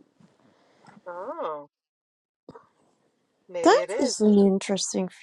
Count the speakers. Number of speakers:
2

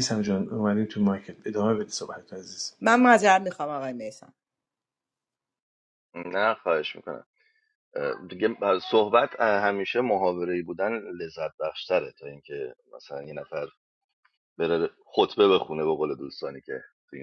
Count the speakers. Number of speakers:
3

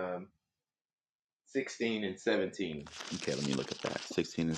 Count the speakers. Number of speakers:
2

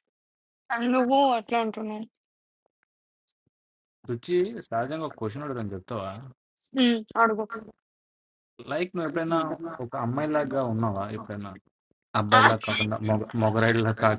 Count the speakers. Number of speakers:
2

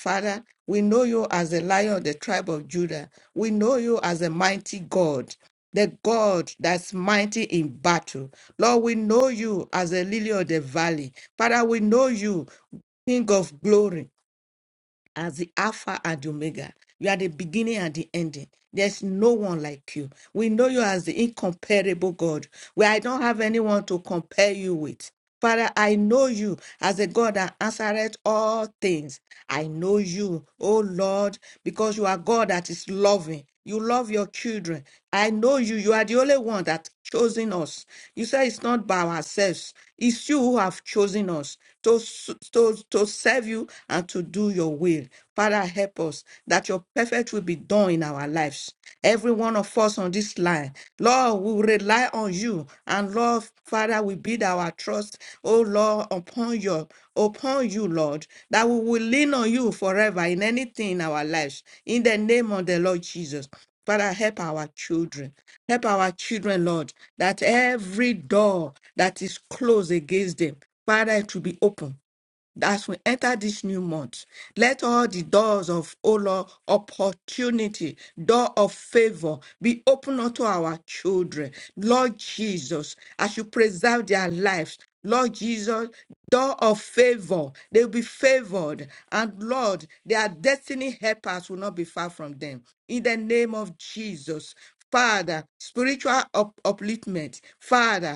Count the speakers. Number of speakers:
1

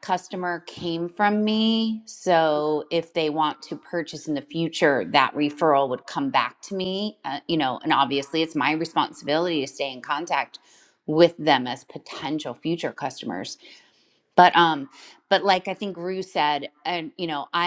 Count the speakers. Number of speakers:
1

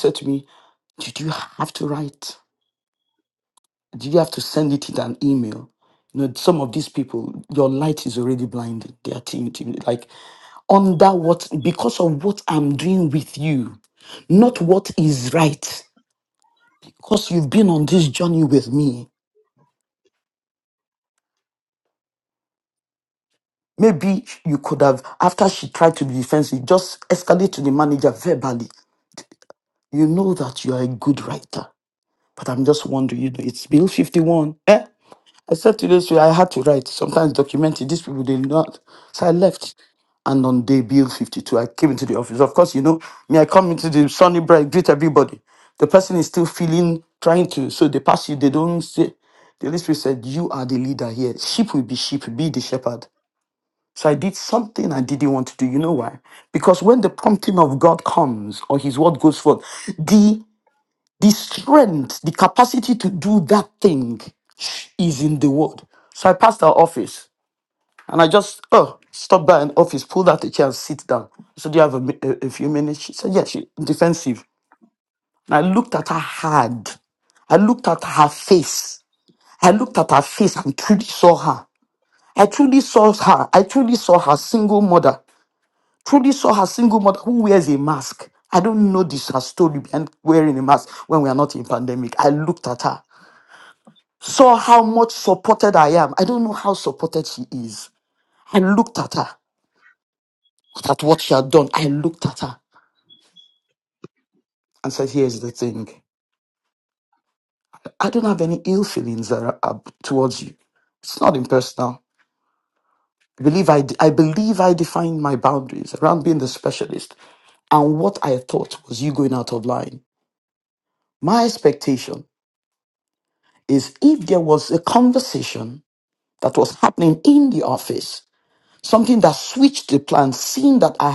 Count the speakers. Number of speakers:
1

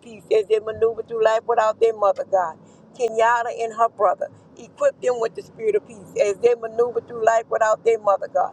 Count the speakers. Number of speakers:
1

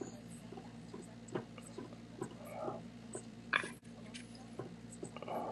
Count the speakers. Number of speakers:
0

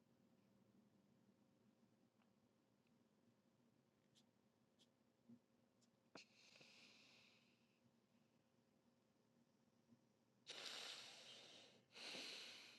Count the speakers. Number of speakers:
0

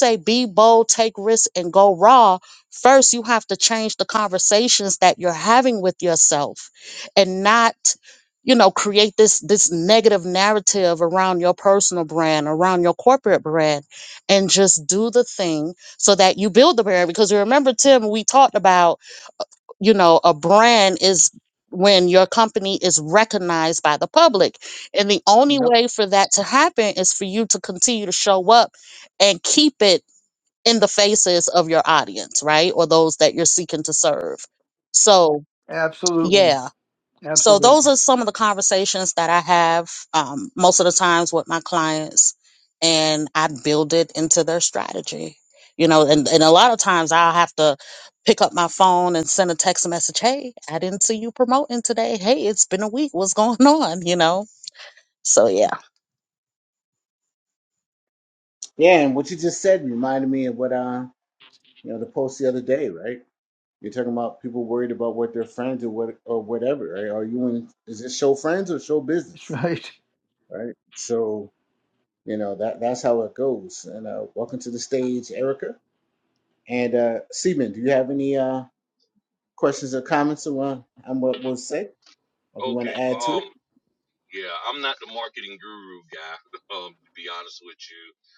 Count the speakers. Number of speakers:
4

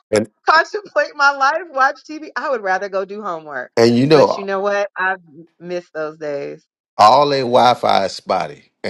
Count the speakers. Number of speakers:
2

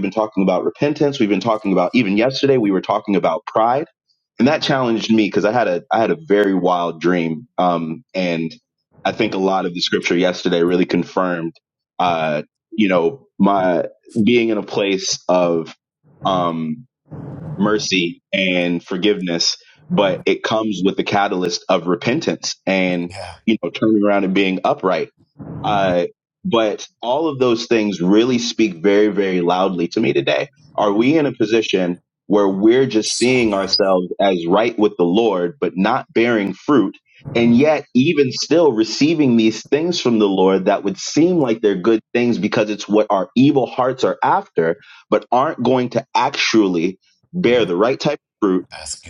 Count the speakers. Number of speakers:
2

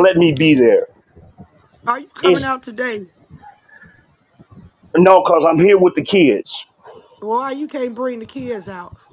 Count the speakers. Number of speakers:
2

